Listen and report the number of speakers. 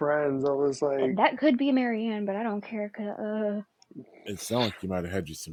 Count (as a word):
three